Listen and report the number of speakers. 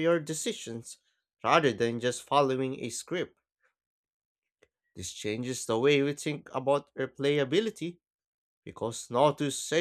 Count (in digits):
1